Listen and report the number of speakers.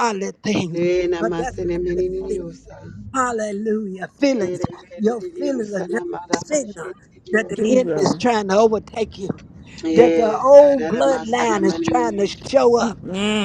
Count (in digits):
3